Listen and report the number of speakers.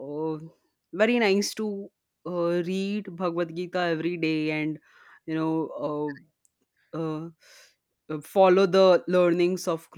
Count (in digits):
1